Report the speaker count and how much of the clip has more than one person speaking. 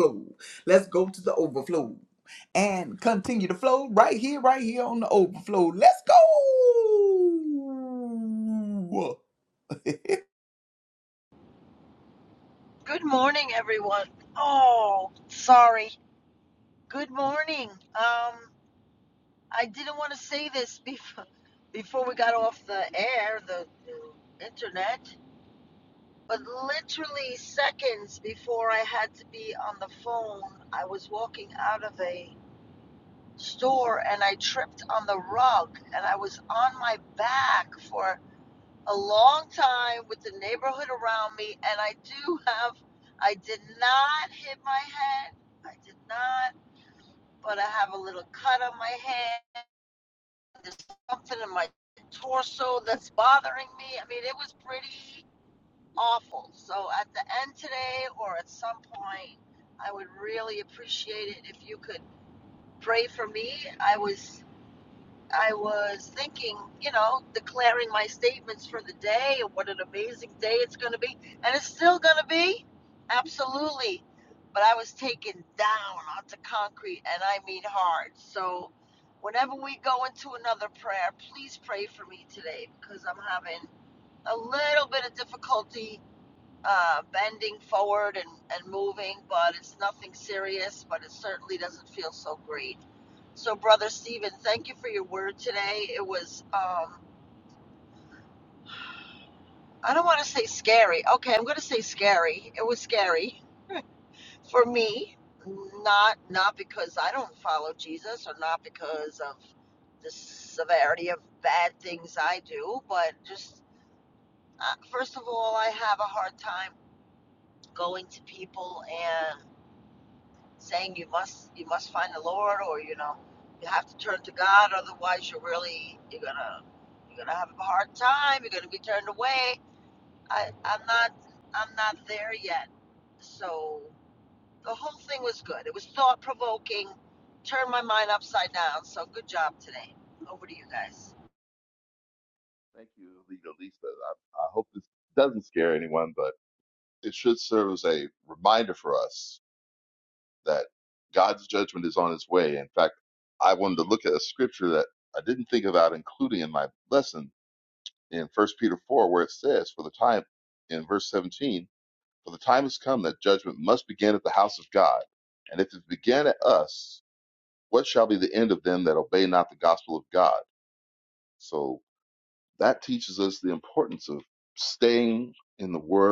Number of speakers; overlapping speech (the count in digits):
3, no overlap